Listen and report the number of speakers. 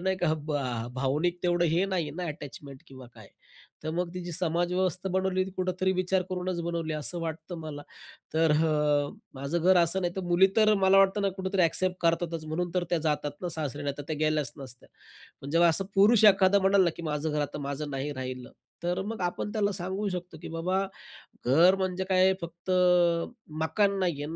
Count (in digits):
1